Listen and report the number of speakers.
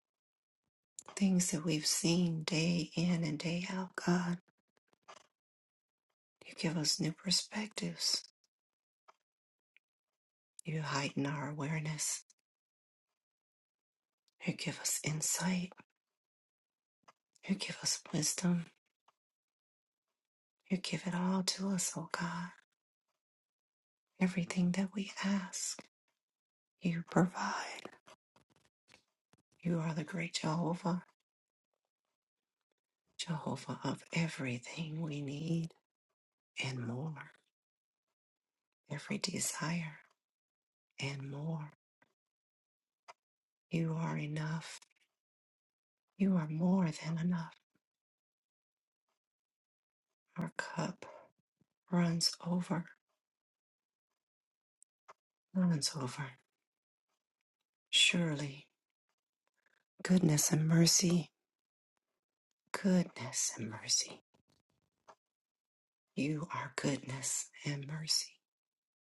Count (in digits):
1